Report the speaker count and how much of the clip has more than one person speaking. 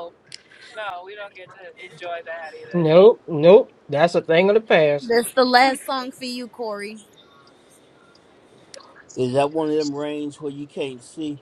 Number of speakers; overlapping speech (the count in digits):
4, about 1%